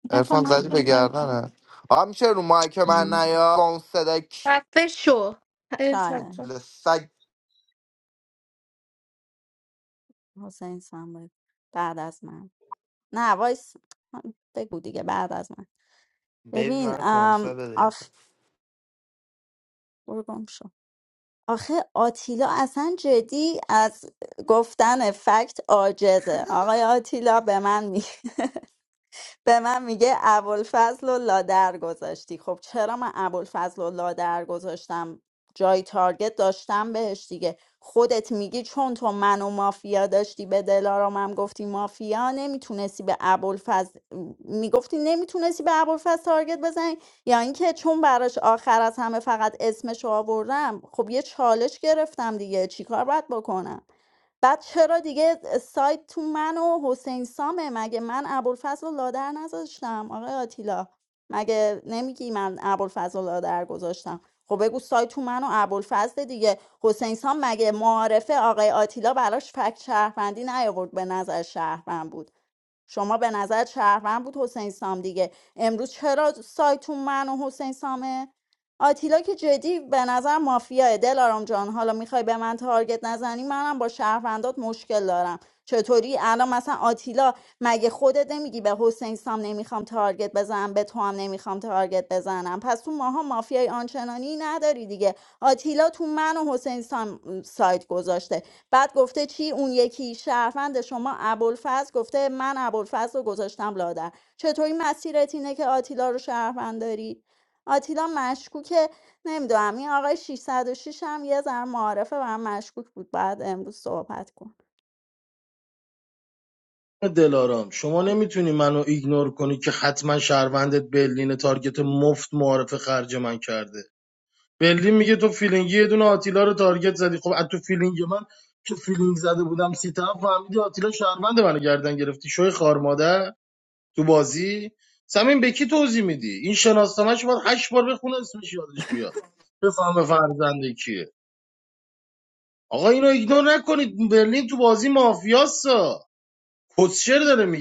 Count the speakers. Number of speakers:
four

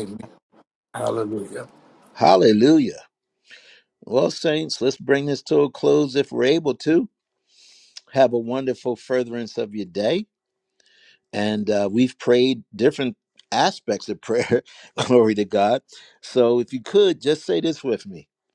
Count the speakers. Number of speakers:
two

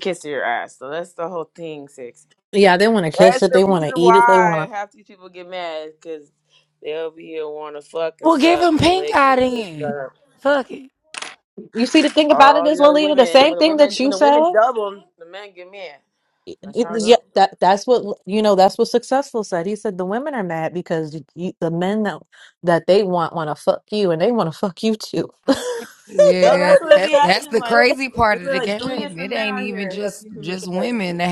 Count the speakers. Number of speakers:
three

